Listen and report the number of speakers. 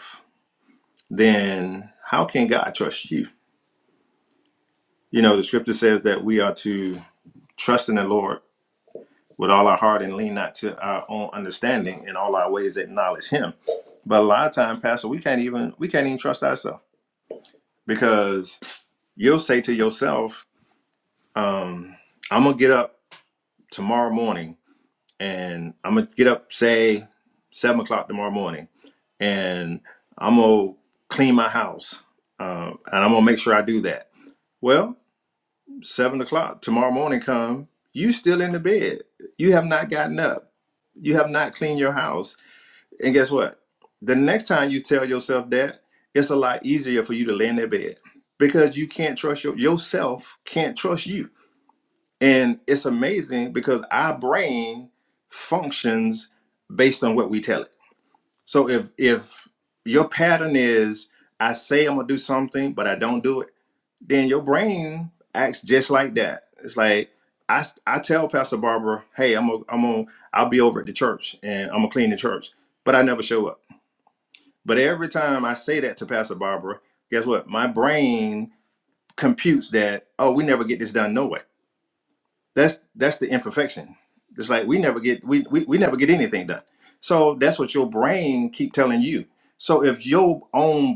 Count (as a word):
one